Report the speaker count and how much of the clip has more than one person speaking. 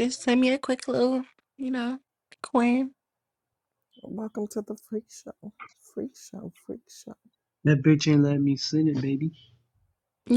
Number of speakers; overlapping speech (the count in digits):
3, no overlap